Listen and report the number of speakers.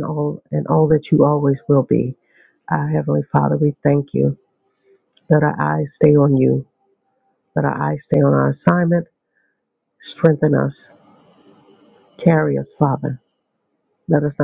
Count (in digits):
1